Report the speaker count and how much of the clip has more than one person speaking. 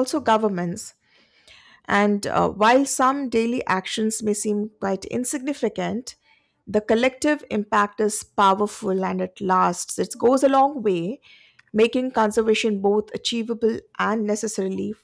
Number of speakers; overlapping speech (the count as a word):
one, no overlap